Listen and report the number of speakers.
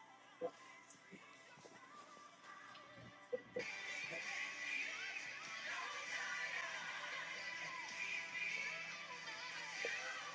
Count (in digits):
0